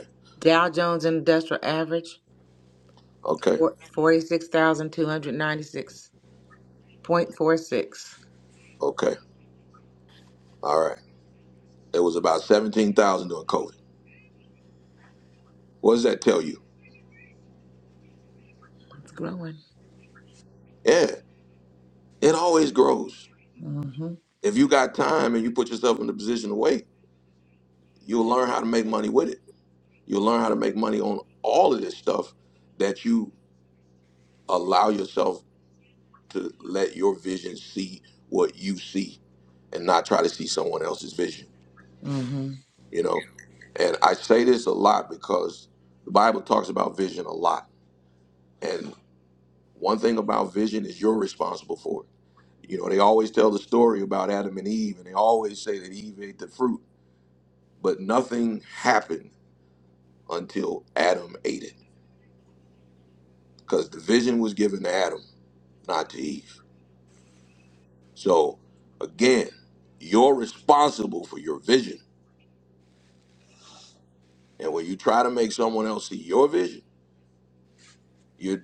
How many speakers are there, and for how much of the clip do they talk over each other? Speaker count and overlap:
2, under 1%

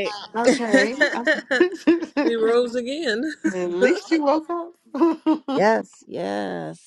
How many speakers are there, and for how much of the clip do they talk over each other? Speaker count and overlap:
3, no overlap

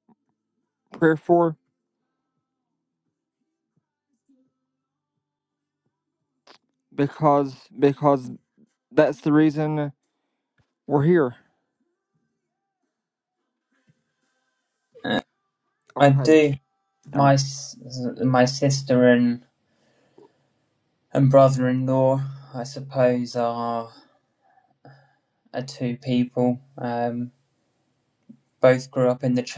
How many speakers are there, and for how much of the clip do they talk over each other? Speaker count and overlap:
2, about 2%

